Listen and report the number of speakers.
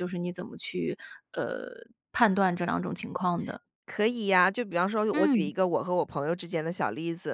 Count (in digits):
2